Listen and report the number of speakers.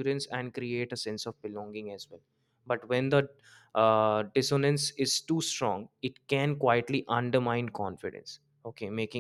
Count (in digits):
1